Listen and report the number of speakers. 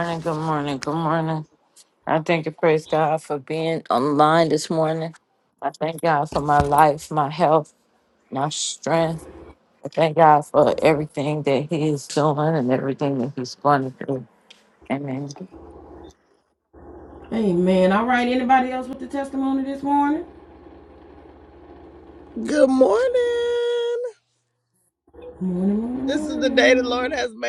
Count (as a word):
three